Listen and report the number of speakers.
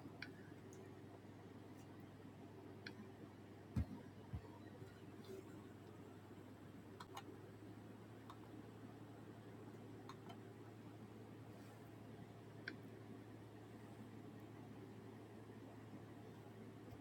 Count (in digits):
0